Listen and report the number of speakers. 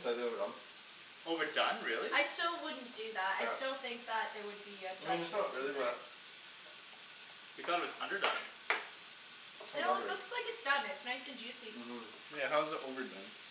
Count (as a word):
four